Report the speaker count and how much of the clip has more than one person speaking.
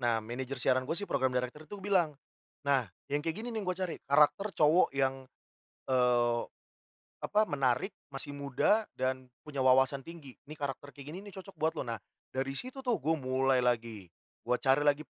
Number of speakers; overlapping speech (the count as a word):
one, no overlap